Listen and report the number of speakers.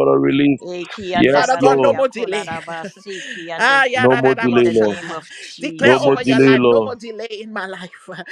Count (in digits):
3